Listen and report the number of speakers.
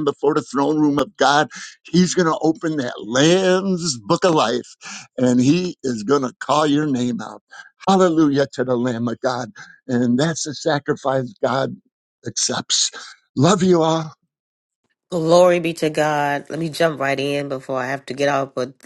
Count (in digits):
2